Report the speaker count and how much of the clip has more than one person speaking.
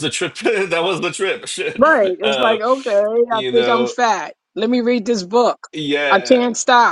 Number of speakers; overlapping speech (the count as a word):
two, about 27%